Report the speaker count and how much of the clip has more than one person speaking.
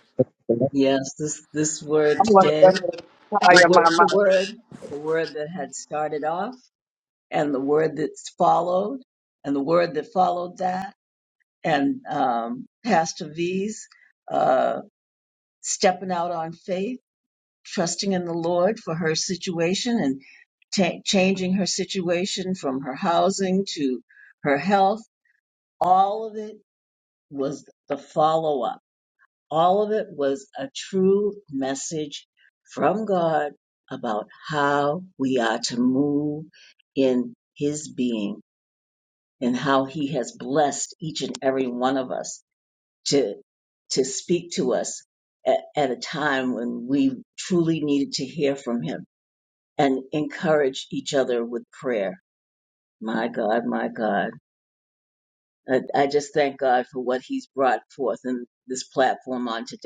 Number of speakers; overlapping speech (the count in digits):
2, about 2%